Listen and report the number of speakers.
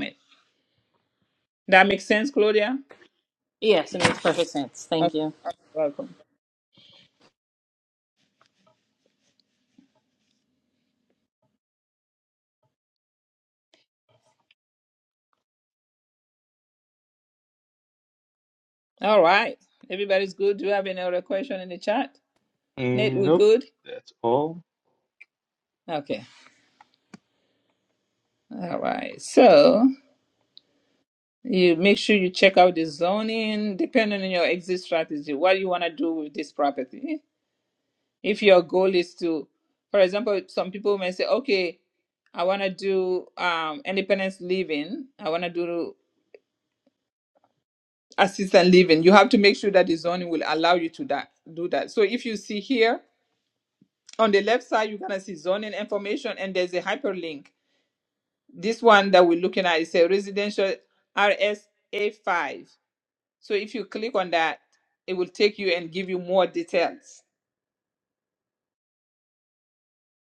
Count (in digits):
3